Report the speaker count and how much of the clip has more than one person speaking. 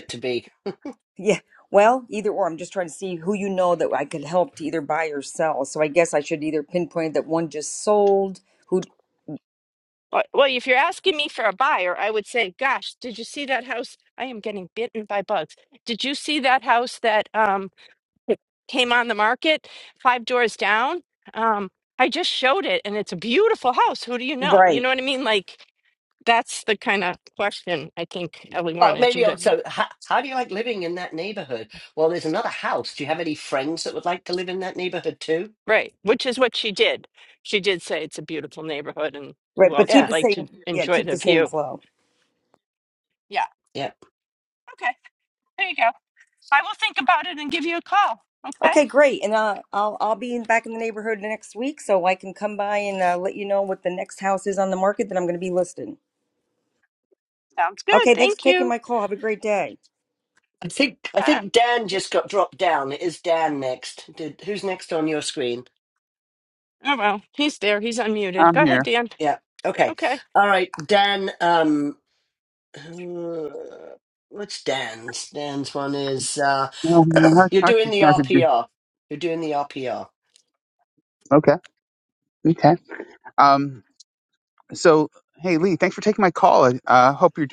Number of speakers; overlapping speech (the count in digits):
4, about 6%